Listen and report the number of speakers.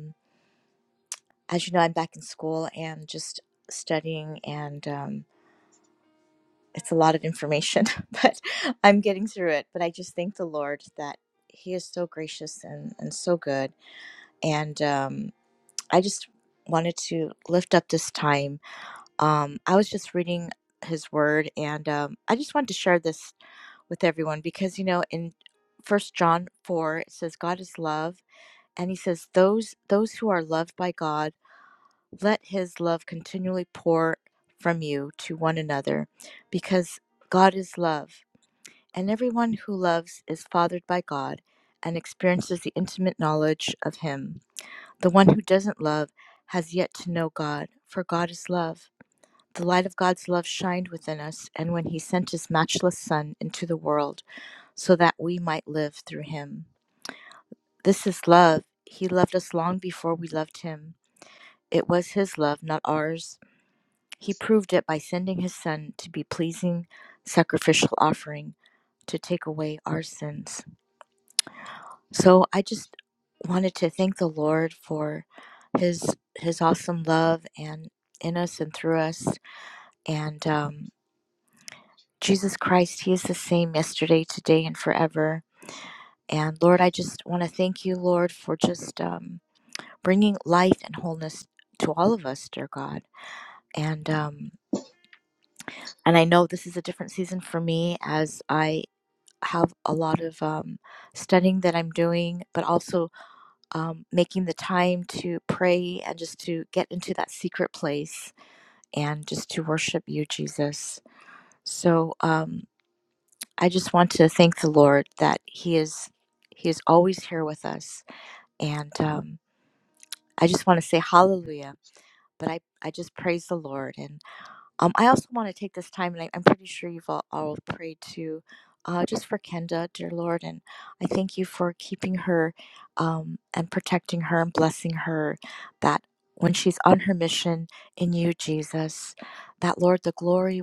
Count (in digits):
1